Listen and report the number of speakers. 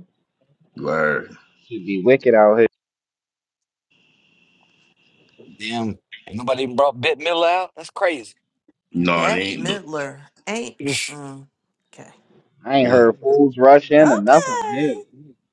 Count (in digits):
4